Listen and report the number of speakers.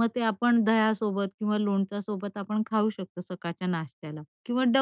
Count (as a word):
one